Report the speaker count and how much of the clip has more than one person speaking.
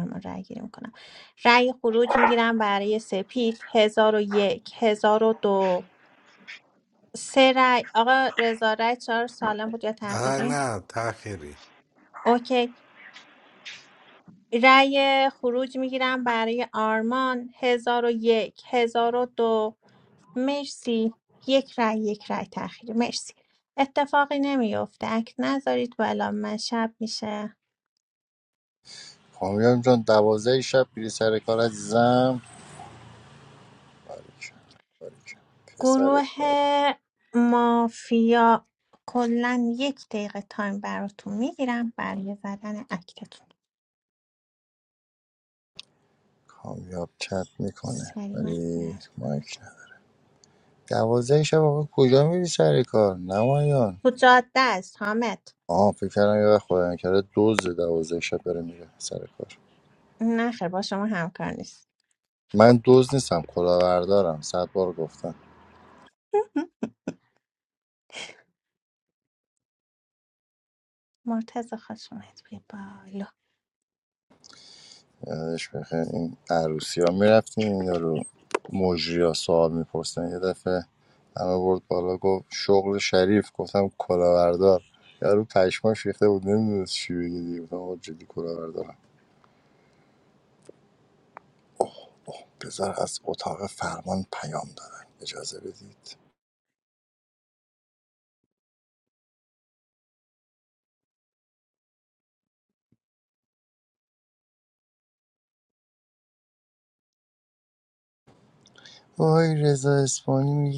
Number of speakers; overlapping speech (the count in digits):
3, about 2%